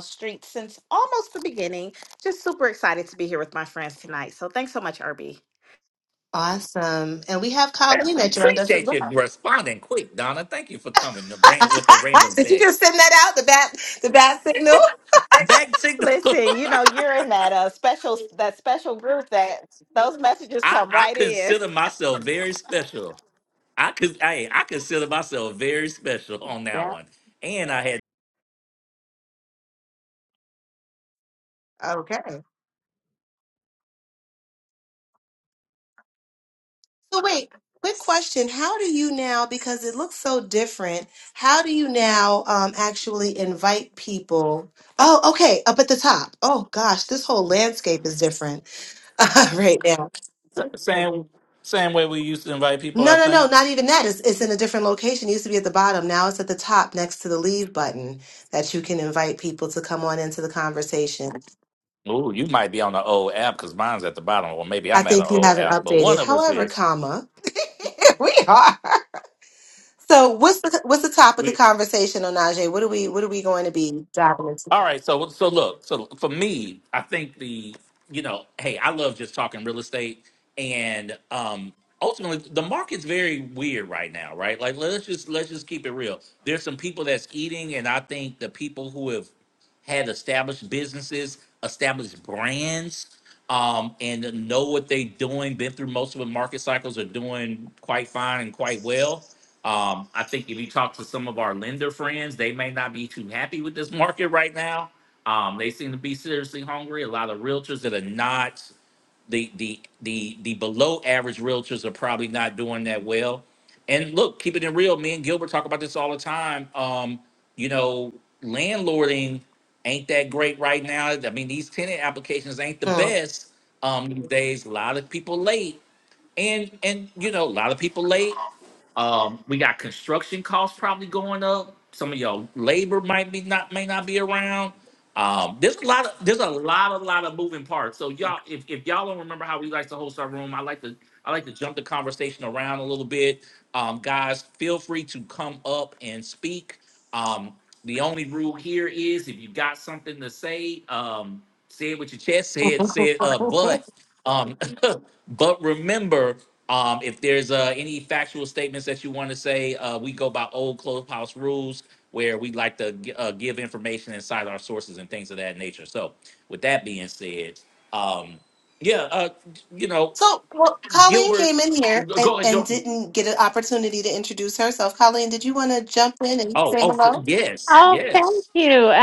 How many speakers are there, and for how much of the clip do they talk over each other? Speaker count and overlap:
4, about 5%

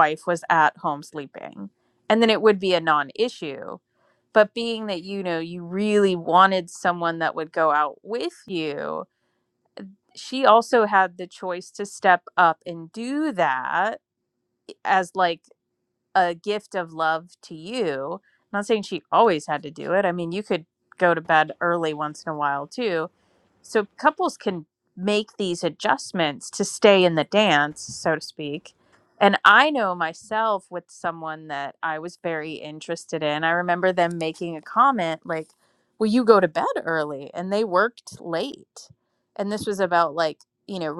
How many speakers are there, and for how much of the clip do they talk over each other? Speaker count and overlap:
1, no overlap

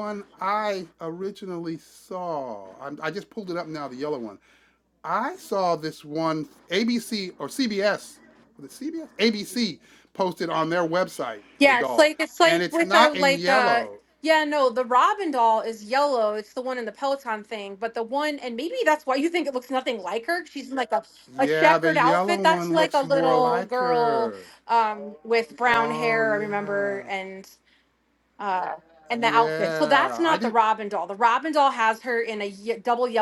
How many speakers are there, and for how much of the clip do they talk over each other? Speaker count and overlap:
2, about 23%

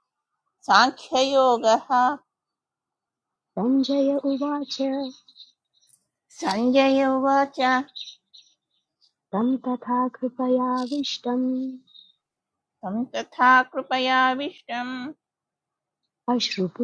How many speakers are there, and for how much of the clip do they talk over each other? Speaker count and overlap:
2, no overlap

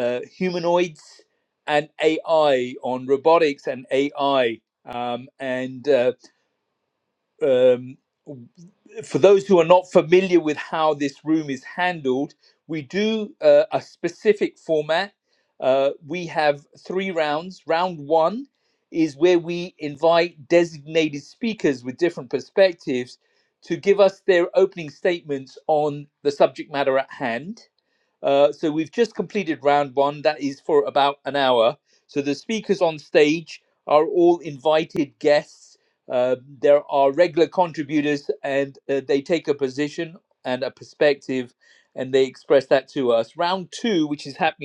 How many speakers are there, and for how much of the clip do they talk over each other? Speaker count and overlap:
1, no overlap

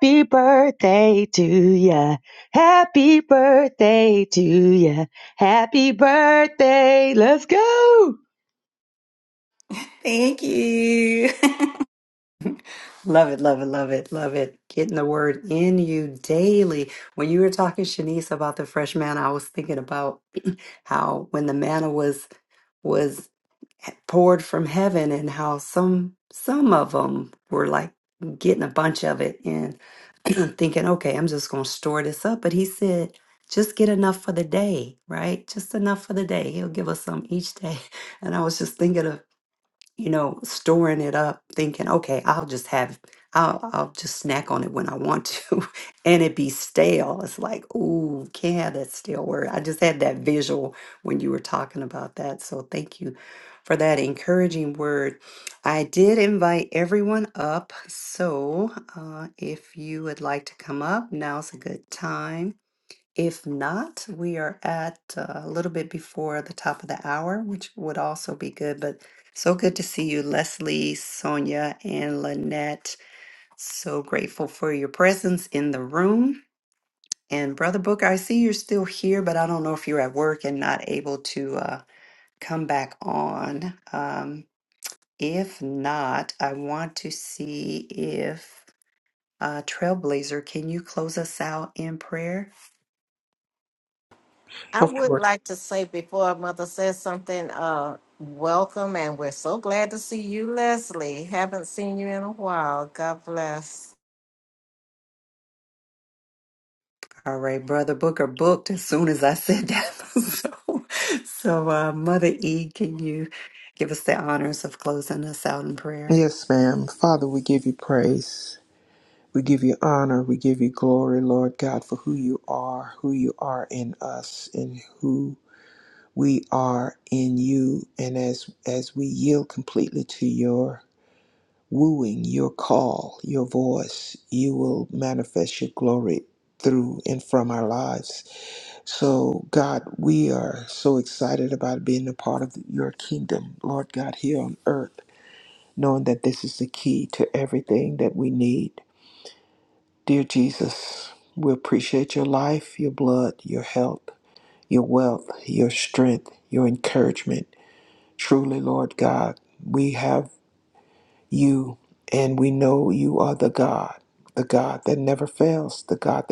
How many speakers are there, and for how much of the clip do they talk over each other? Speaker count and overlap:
5, under 1%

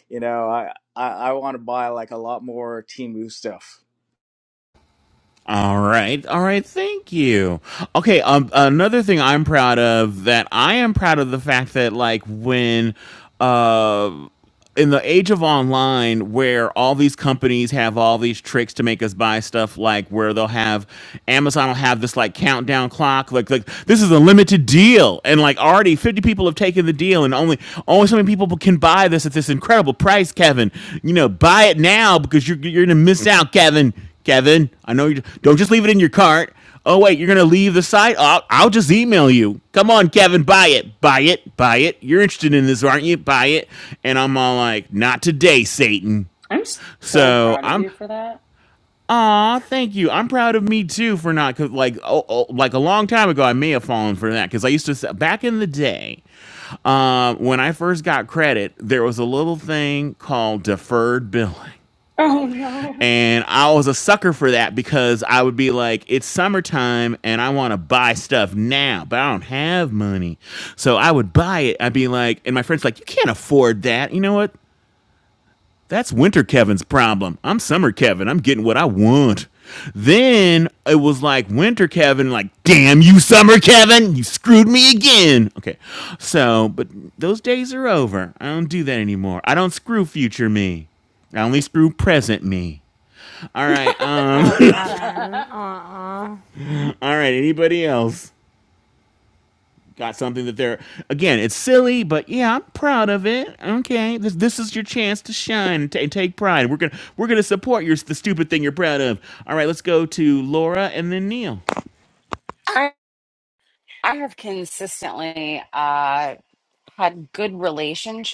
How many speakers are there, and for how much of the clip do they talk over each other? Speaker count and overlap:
5, about 1%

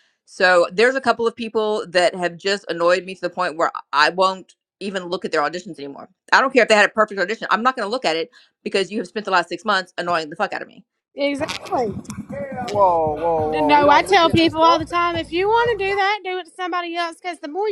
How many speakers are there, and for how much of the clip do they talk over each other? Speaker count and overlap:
3, about 8%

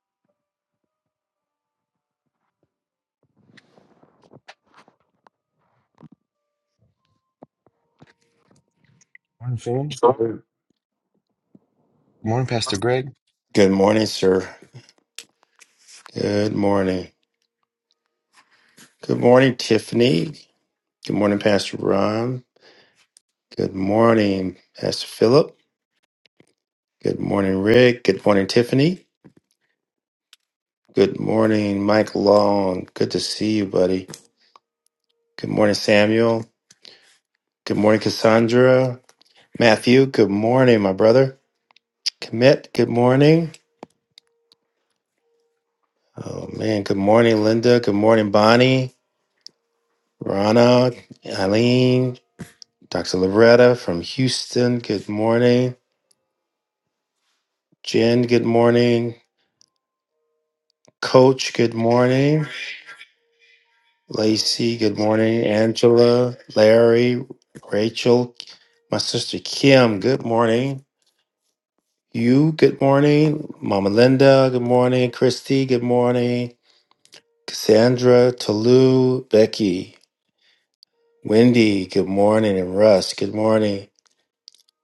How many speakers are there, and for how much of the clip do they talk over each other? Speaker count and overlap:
2, no overlap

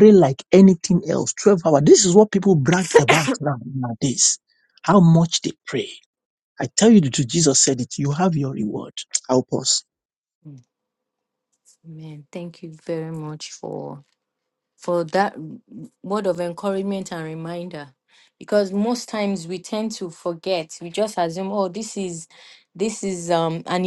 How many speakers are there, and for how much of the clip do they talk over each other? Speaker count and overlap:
2, no overlap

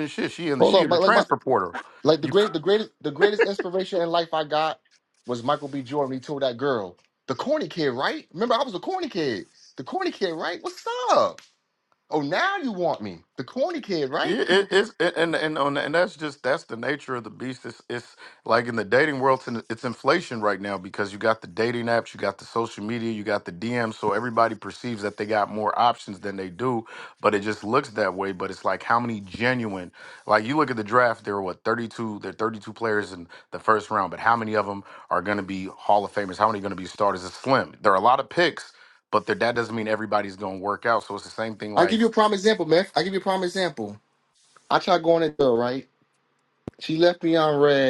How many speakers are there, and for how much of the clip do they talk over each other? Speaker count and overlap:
2, about 3%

